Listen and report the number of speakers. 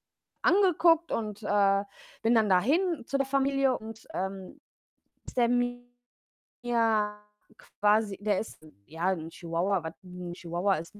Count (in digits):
1